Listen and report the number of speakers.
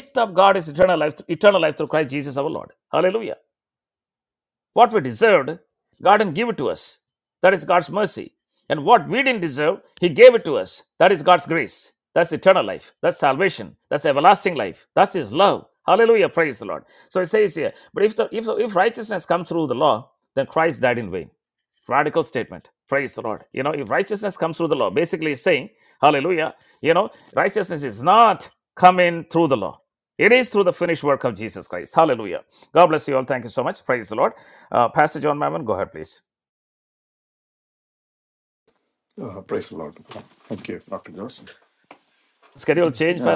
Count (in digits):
2